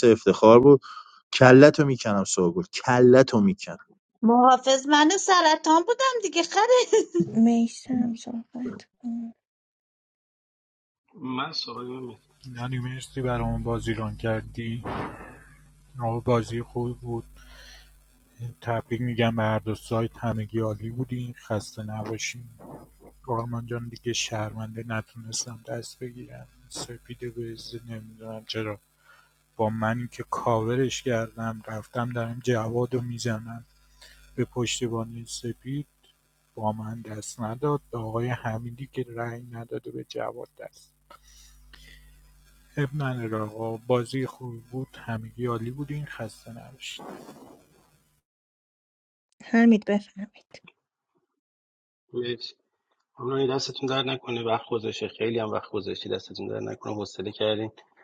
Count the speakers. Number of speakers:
five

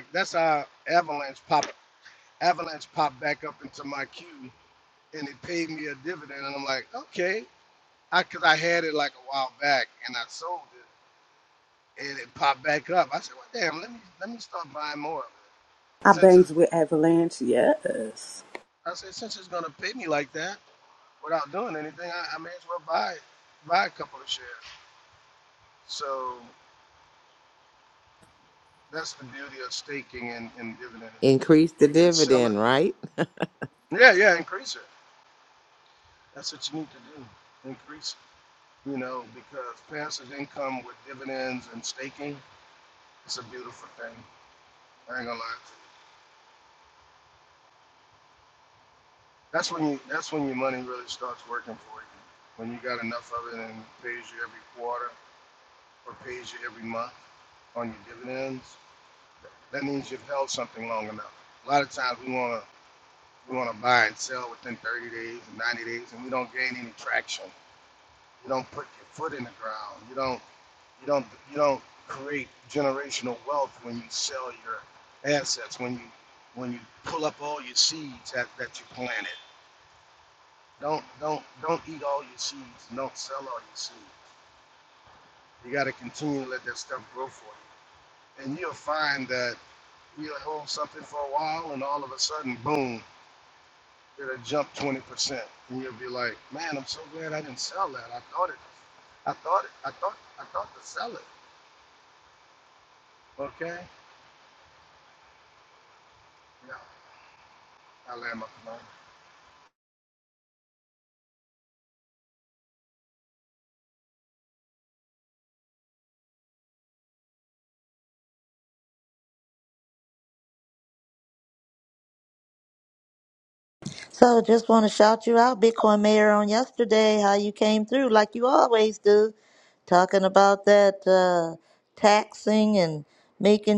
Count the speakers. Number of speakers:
four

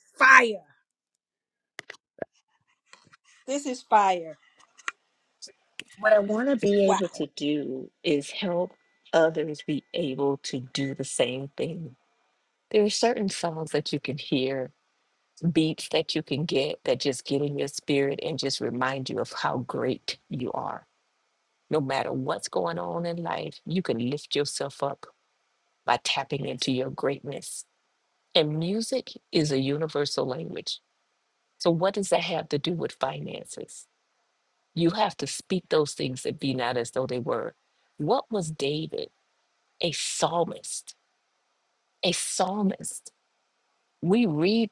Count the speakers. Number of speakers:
two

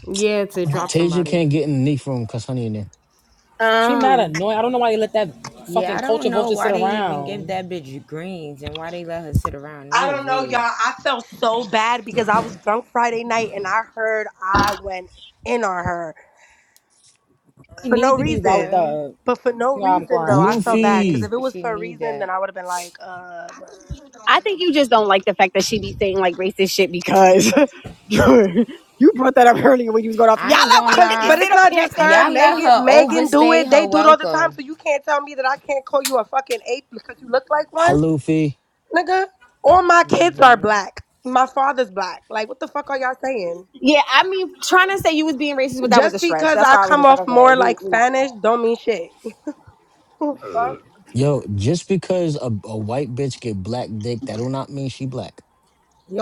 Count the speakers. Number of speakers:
six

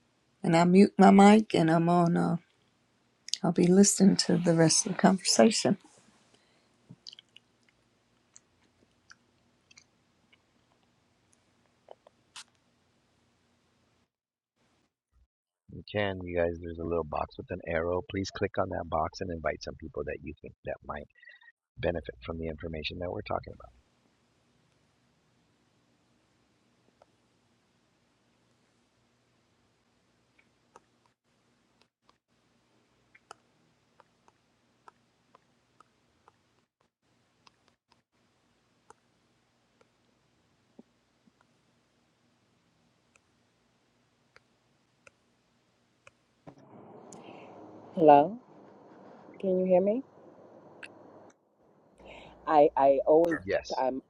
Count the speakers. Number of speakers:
three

